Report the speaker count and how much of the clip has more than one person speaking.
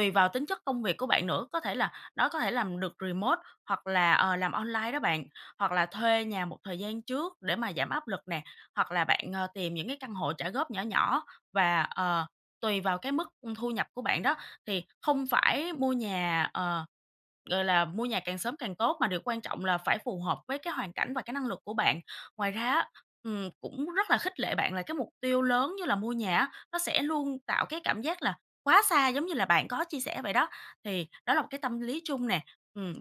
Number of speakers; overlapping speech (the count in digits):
1, no overlap